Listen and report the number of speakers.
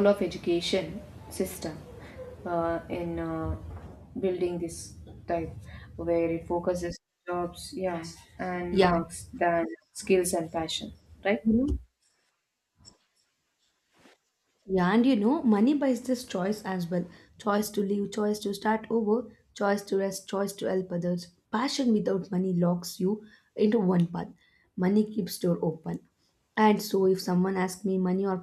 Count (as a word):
two